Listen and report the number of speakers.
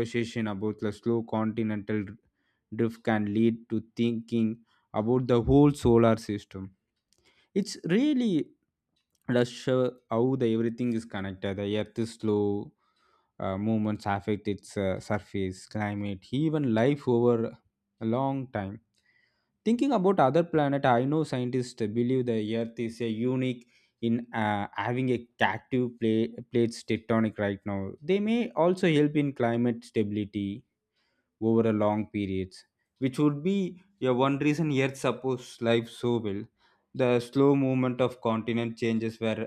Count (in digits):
1